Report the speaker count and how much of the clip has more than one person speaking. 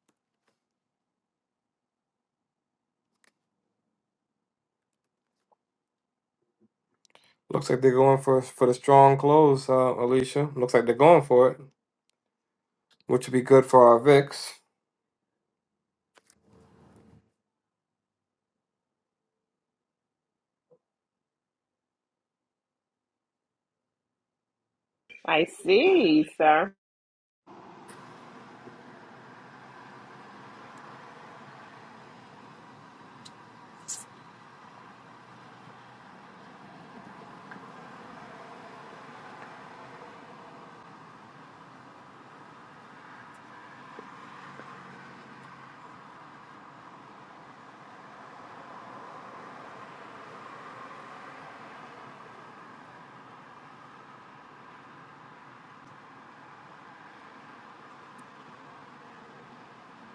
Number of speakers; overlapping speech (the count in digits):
2, no overlap